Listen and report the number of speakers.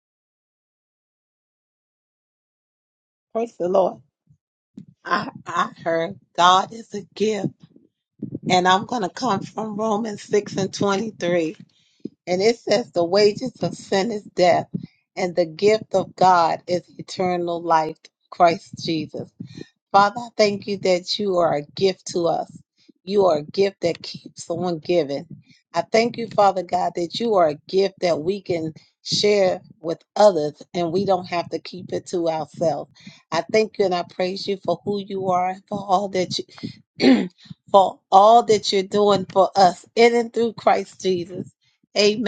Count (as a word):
one